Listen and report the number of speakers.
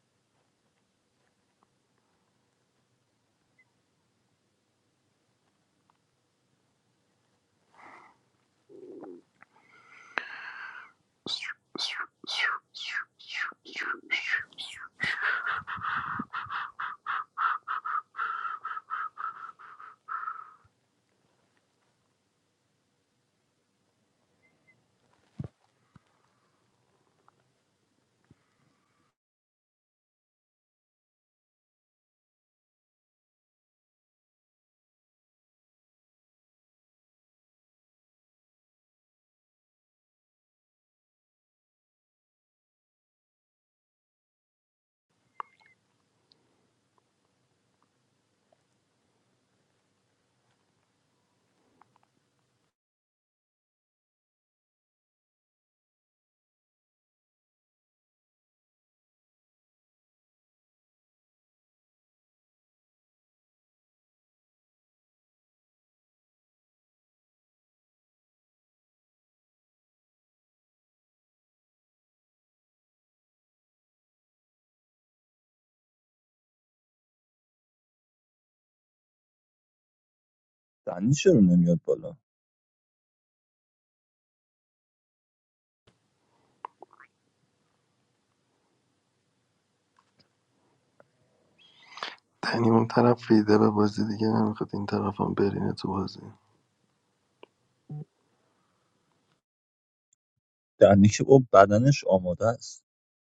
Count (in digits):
2